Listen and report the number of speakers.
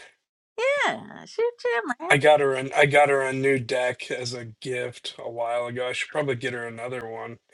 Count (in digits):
2